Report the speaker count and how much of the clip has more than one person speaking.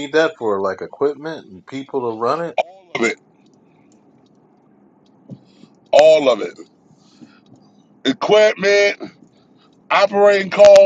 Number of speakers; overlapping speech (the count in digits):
2, no overlap